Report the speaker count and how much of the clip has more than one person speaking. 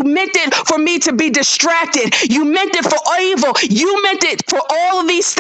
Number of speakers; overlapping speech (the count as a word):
one, no overlap